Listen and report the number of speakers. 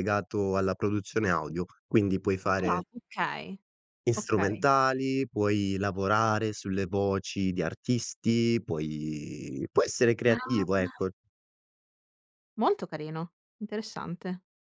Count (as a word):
two